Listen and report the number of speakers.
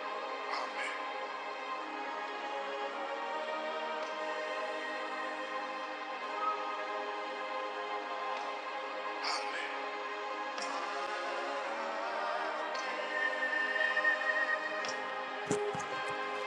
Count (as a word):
zero